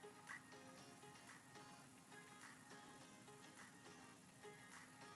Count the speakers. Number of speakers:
0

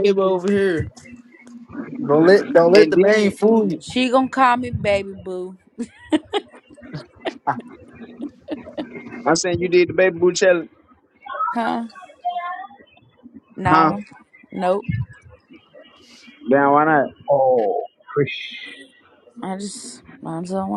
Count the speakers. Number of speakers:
4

